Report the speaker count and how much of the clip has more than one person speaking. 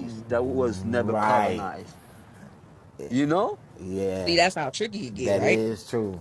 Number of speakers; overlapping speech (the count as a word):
three, about 22%